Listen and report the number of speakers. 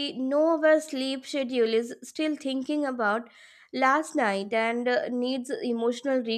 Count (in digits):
1